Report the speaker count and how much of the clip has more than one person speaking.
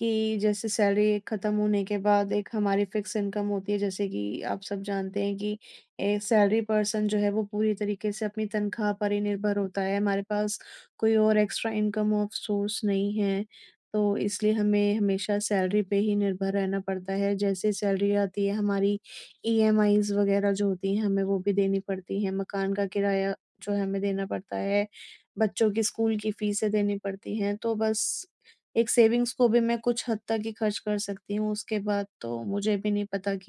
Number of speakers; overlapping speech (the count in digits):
1, no overlap